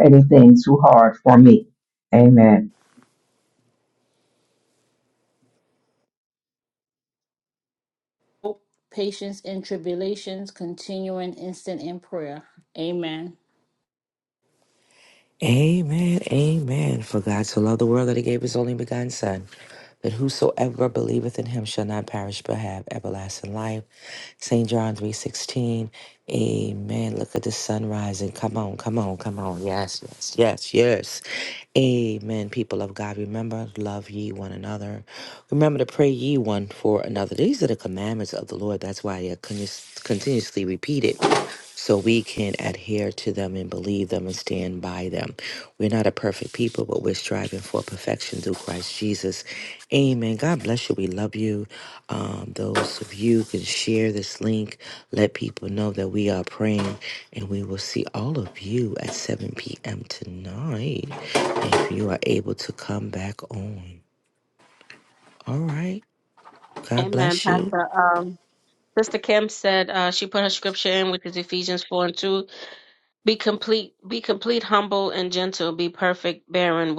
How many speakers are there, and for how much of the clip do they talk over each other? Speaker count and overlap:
4, about 1%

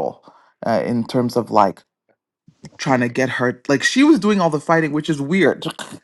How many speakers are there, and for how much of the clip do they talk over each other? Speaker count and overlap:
1, no overlap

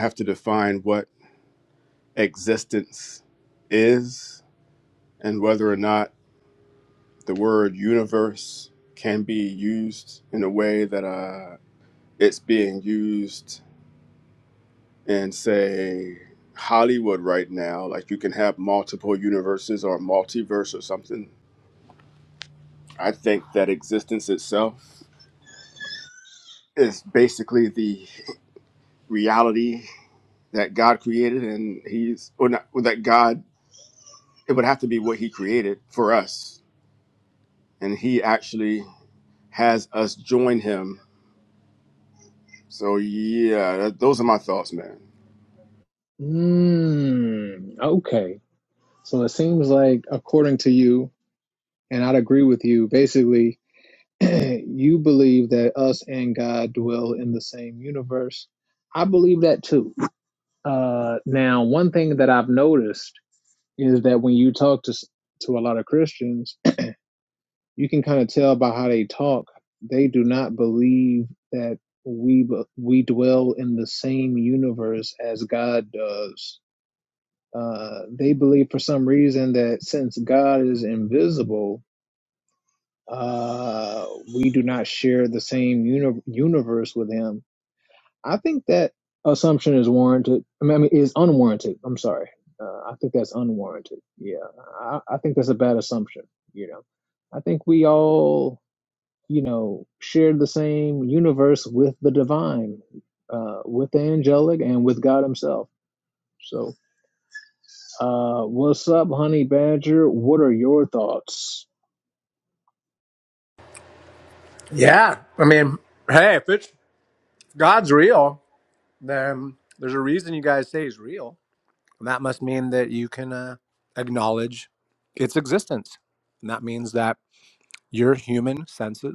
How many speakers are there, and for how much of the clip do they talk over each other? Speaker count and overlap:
3, no overlap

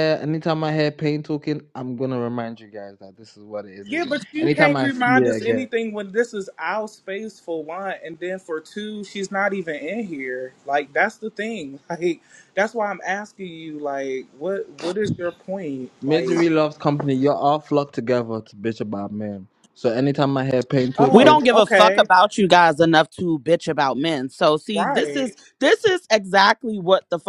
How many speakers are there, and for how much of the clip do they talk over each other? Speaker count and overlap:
3, about 14%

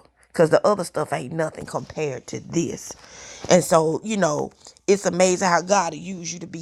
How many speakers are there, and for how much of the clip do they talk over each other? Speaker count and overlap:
1, no overlap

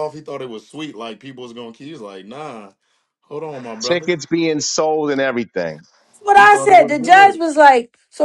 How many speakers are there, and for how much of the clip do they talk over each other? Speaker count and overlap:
3, about 16%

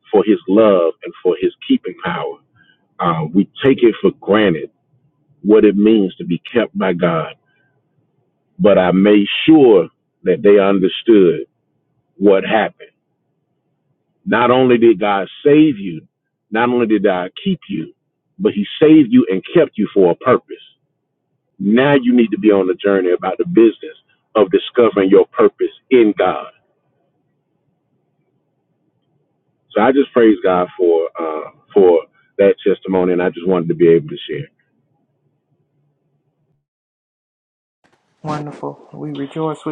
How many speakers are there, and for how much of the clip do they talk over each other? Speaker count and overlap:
2, no overlap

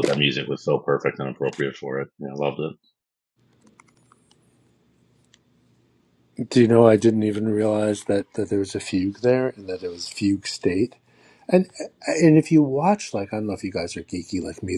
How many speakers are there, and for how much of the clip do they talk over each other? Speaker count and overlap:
2, no overlap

